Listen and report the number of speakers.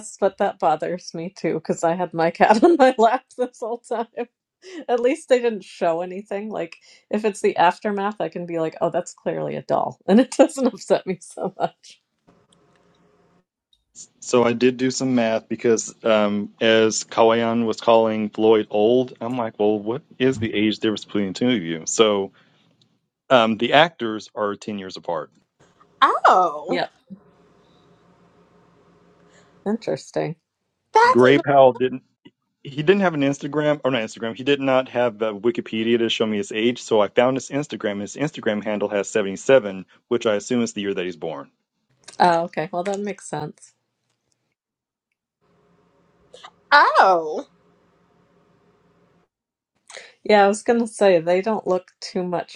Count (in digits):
3